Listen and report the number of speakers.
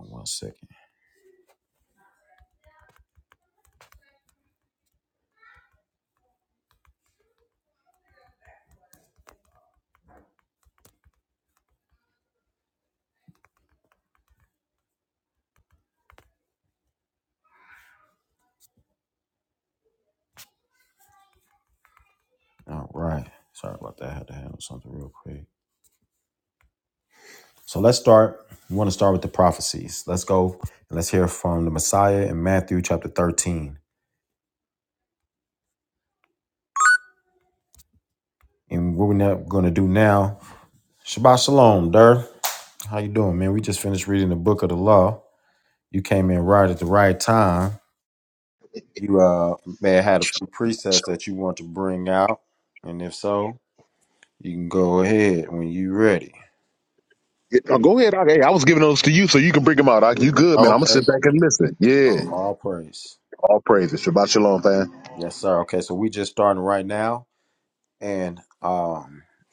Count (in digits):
2